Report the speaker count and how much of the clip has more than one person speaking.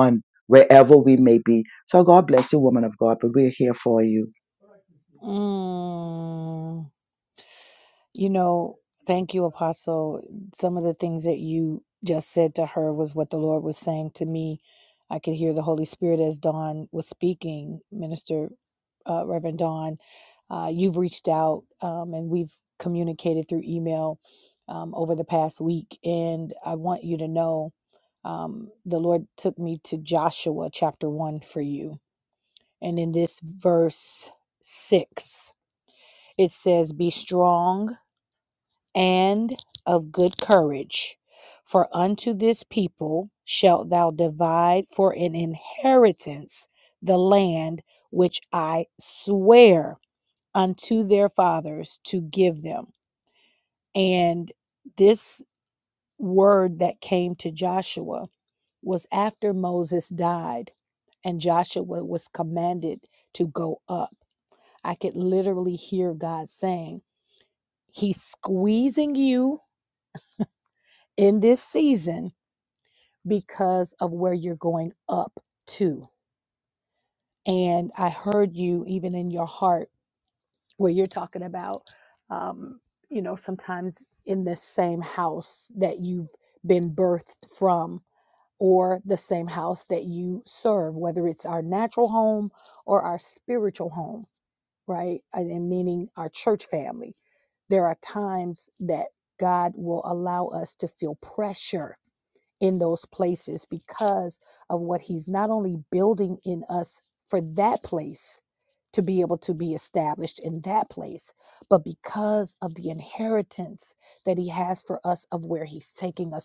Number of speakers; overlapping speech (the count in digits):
2, no overlap